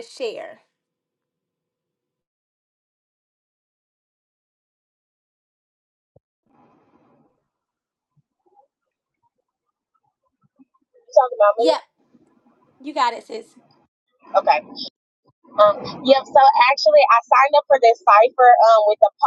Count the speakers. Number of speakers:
2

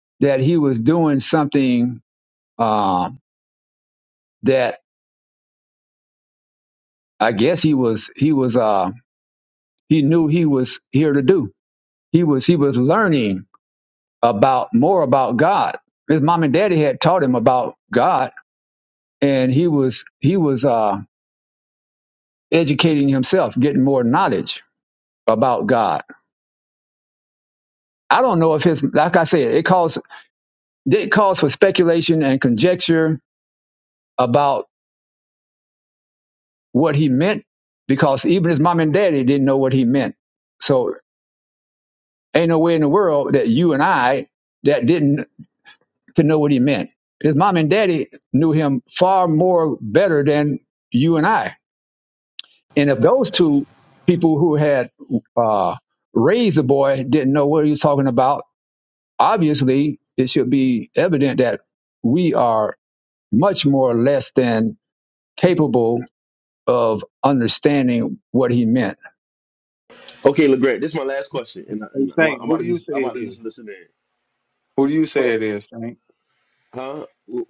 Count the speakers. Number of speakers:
3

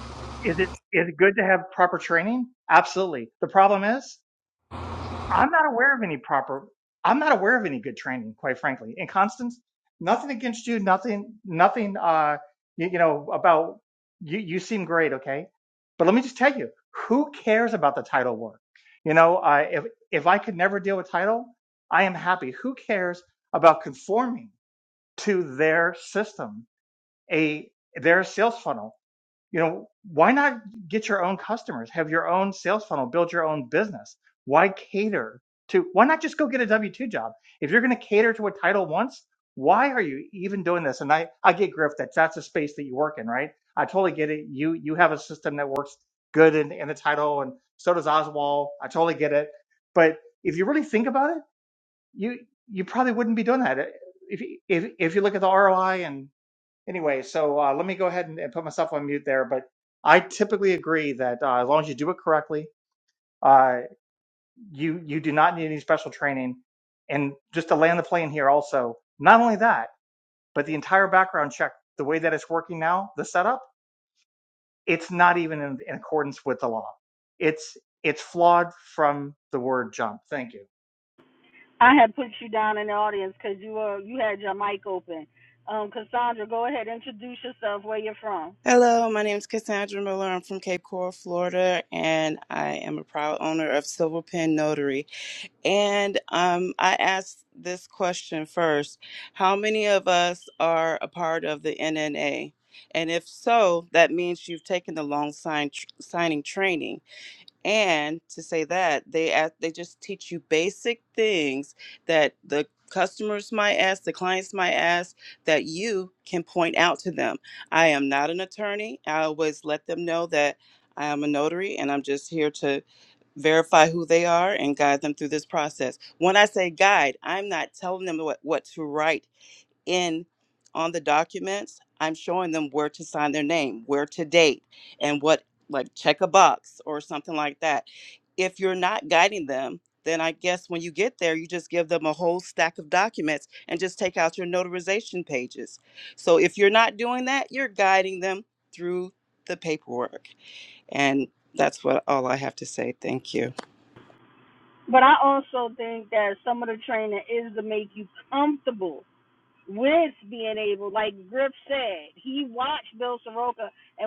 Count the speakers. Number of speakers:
3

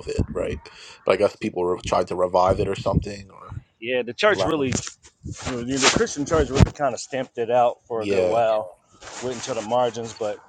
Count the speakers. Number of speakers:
2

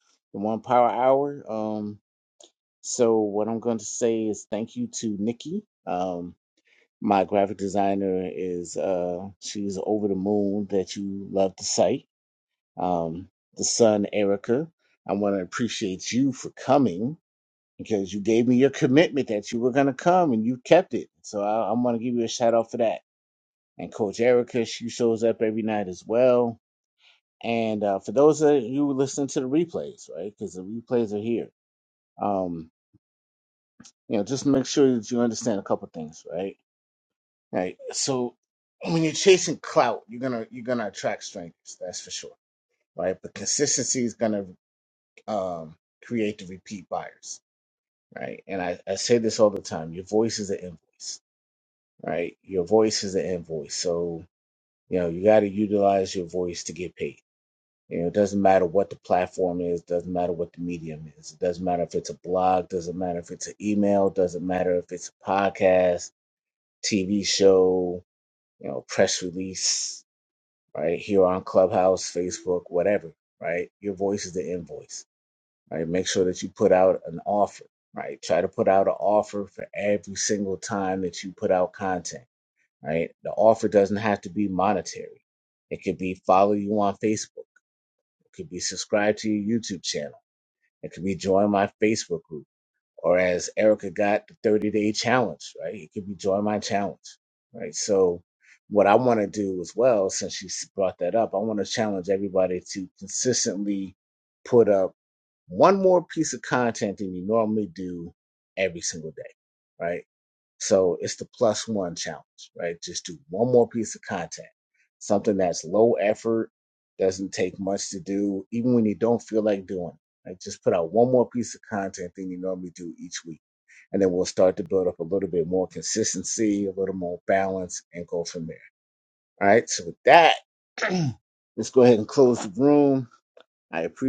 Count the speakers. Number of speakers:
1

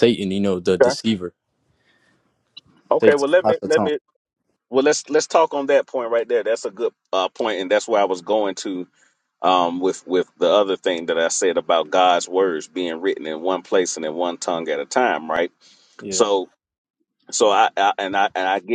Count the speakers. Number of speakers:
2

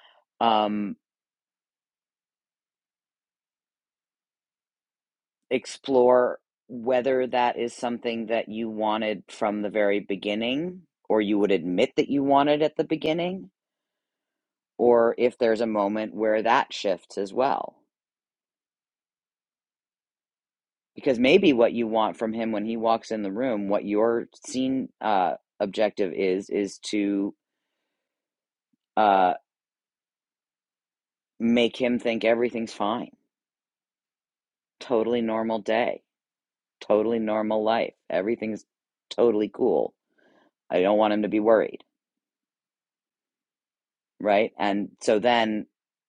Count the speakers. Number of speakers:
1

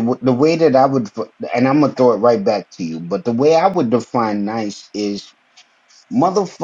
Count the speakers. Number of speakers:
1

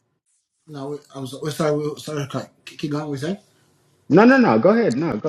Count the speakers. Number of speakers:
2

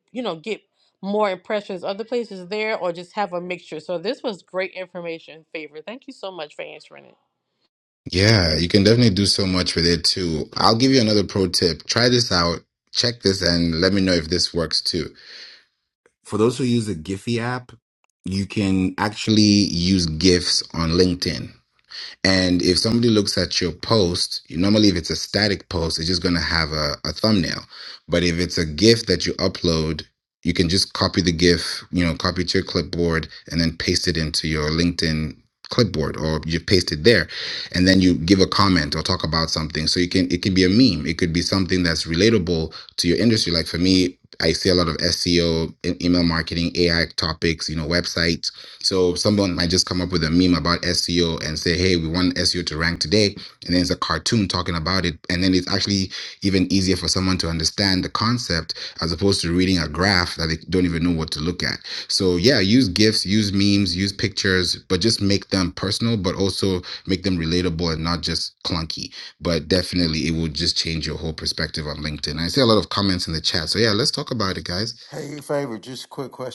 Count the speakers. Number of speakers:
3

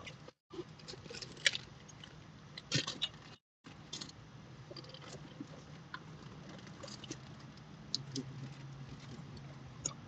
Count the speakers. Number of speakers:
0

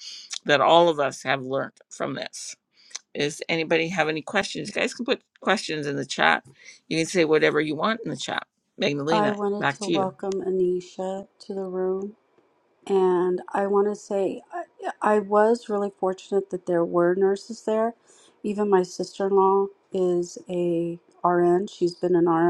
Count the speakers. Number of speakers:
2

